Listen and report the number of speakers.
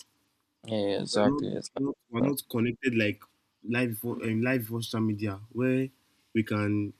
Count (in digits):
2